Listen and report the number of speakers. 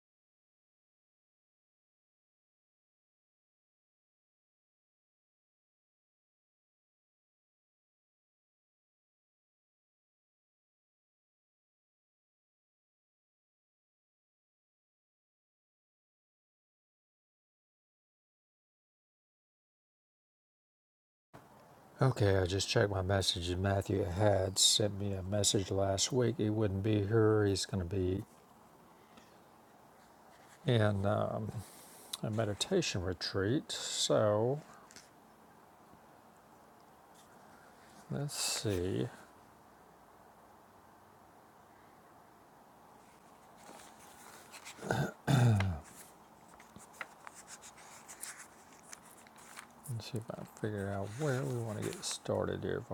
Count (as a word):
one